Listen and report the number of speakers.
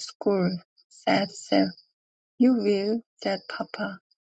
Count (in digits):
1